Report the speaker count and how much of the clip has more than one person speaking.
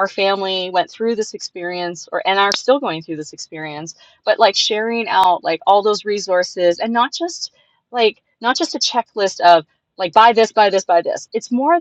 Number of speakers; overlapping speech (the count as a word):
one, no overlap